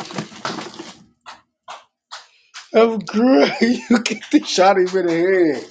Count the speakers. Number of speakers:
1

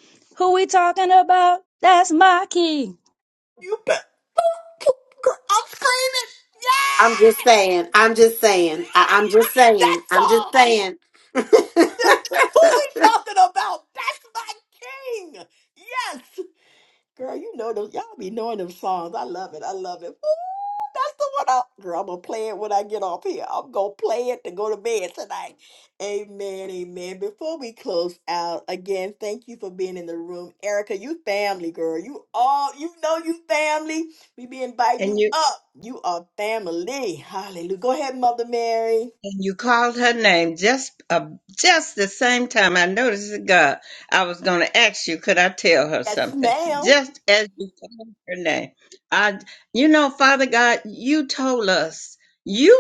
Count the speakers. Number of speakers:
4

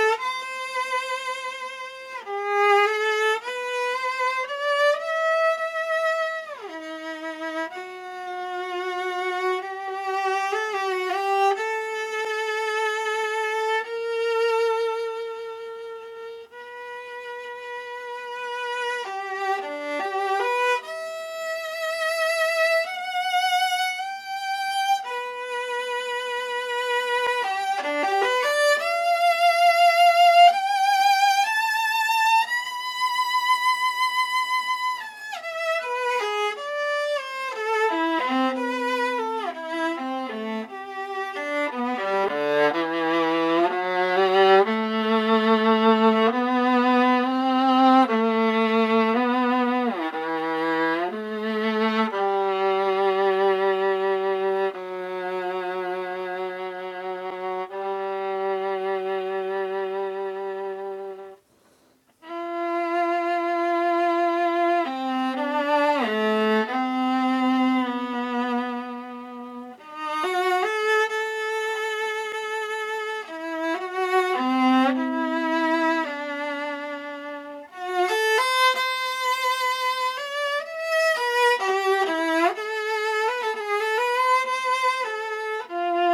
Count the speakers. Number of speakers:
1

